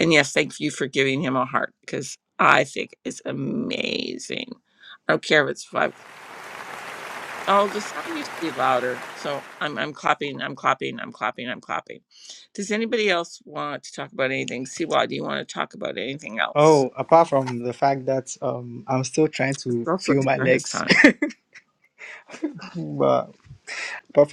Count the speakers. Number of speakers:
2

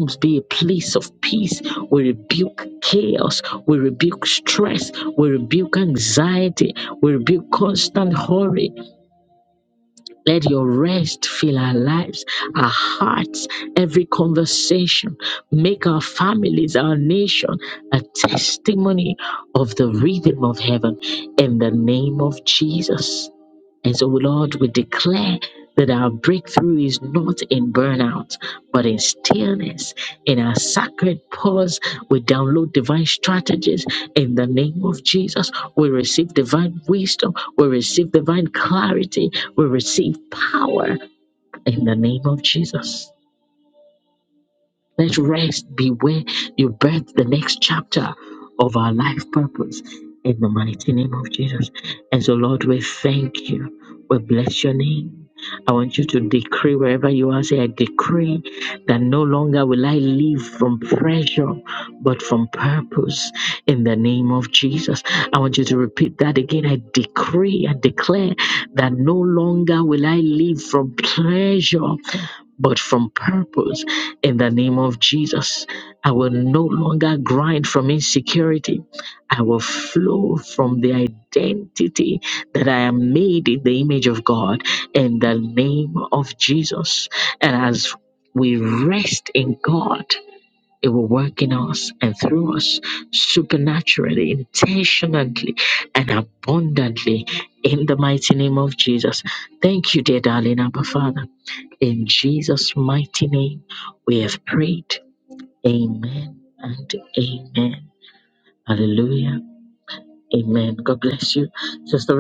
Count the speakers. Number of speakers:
1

